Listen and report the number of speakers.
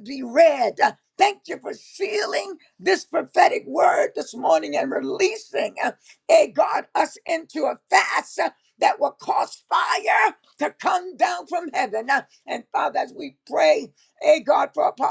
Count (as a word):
one